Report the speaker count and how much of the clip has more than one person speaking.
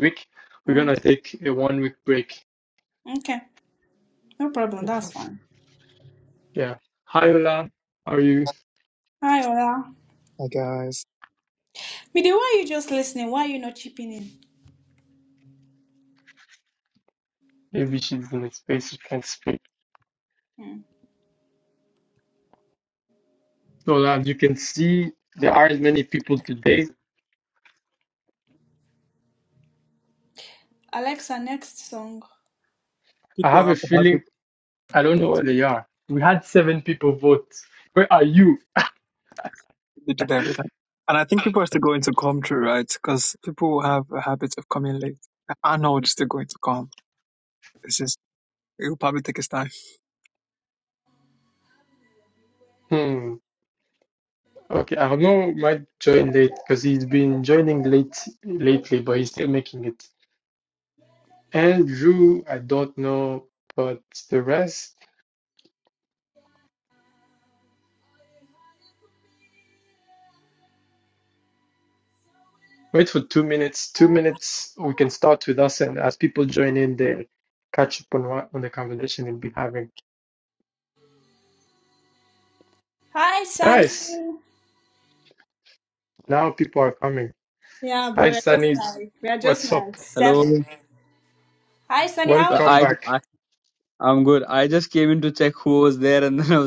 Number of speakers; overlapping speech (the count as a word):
four, about 4%